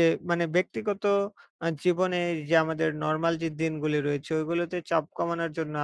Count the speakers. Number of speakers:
1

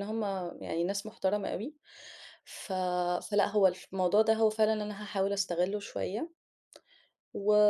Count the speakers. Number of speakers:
1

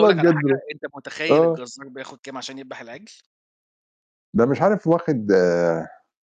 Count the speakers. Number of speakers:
2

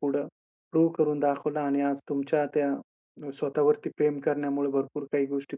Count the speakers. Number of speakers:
1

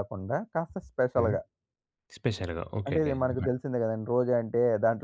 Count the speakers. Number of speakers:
2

